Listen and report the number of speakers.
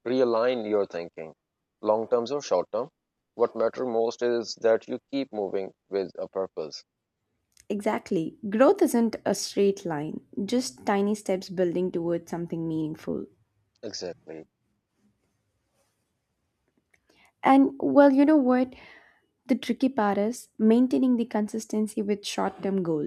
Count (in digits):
2